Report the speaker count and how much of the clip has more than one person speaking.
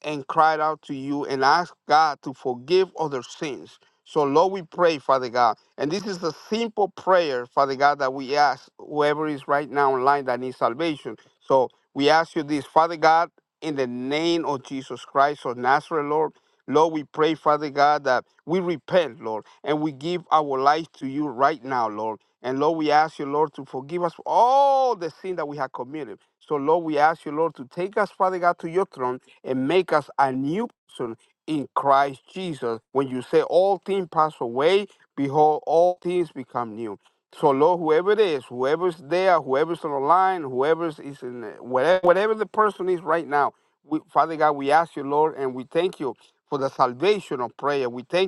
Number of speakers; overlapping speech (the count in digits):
1, no overlap